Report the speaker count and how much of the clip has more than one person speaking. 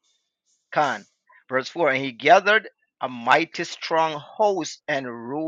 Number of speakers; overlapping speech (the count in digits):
1, no overlap